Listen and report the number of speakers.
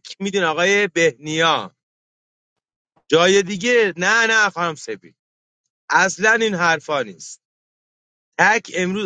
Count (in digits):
1